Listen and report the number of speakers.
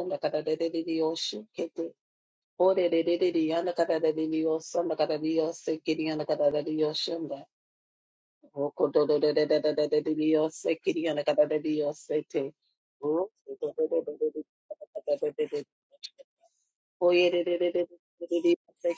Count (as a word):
one